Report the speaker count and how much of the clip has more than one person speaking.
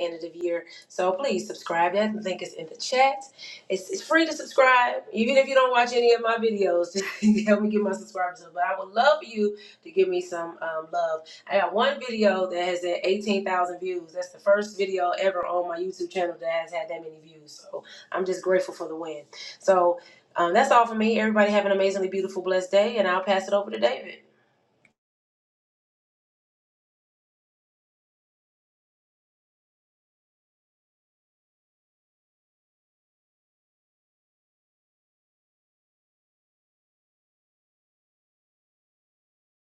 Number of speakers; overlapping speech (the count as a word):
one, no overlap